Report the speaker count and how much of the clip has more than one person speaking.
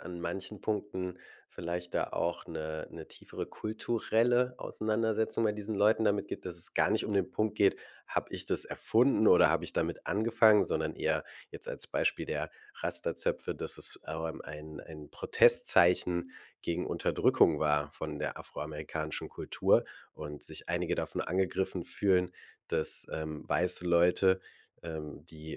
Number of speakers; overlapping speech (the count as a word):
one, no overlap